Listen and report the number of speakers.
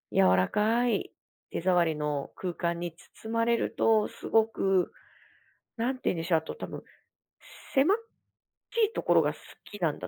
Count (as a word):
one